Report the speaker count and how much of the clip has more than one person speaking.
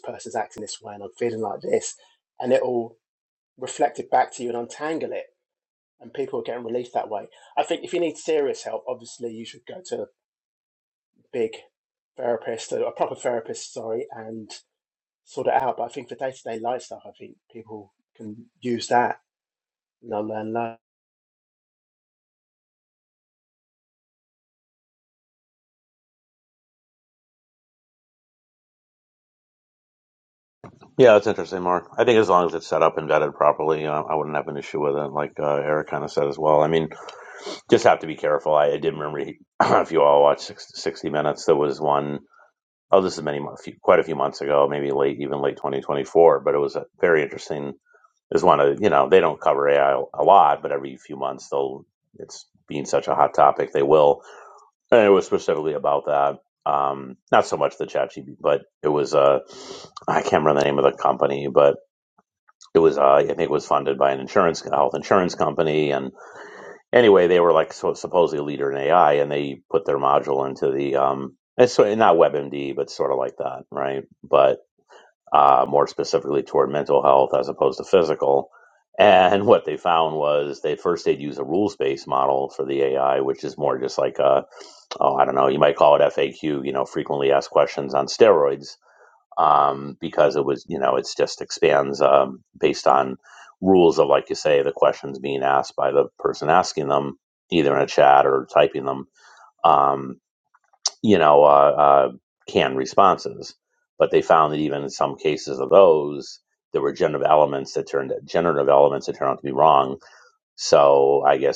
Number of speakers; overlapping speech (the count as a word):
two, no overlap